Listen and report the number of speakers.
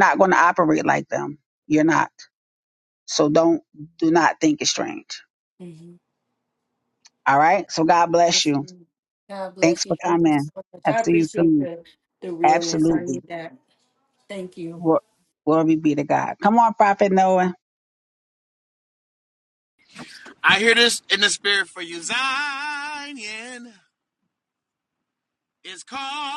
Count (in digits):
3